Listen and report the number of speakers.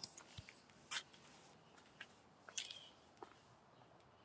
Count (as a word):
zero